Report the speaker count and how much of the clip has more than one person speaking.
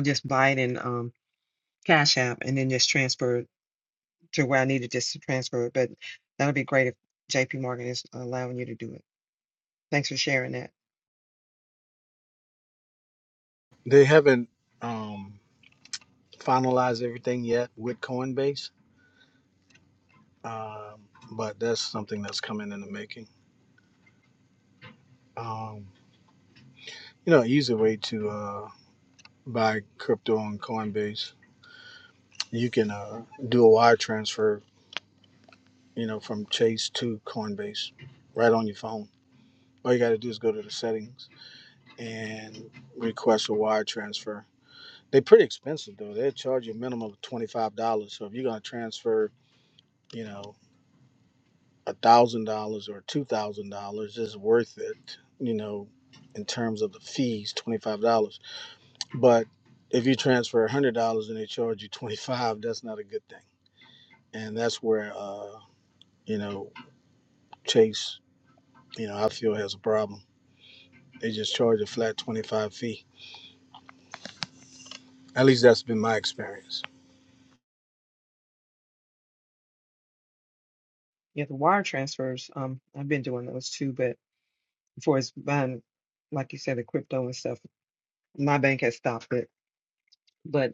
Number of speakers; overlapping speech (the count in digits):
2, no overlap